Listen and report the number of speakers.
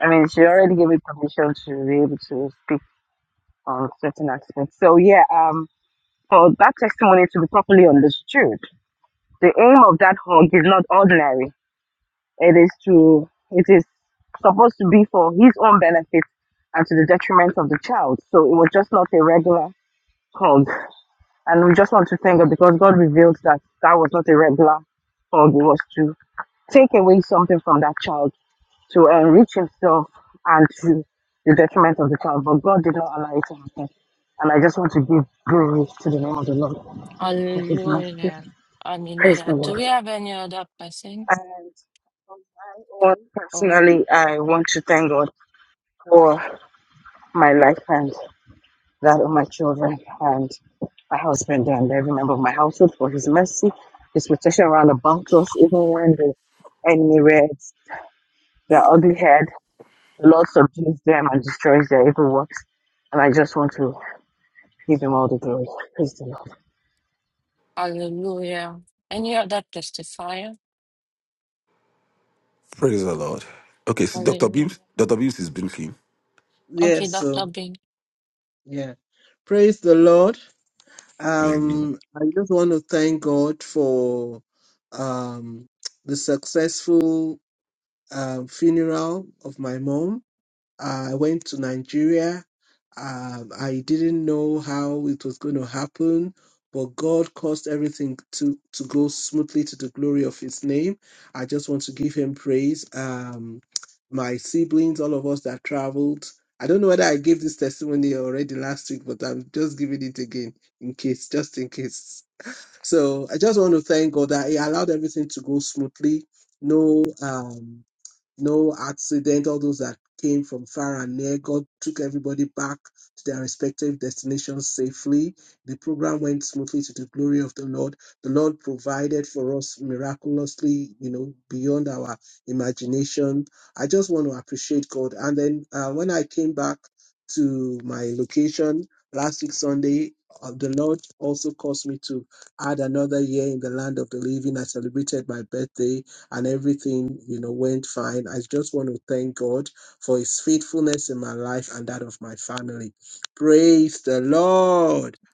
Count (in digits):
4